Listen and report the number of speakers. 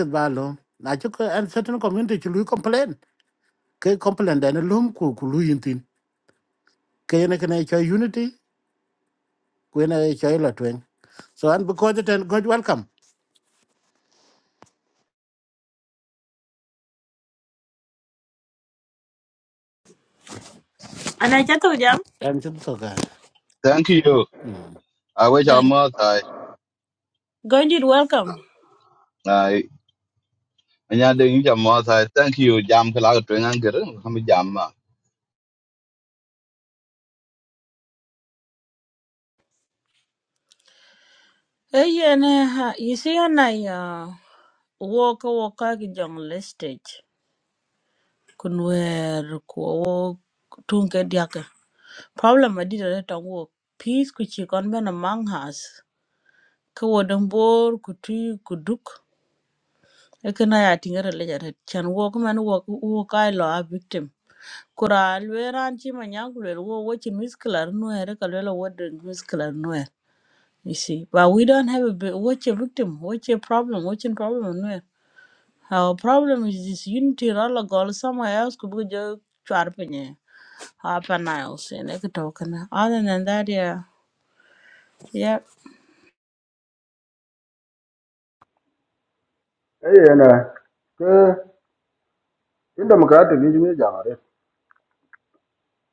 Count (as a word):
four